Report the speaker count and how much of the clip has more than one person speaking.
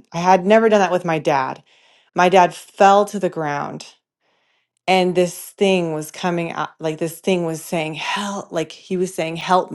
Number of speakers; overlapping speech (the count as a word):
one, no overlap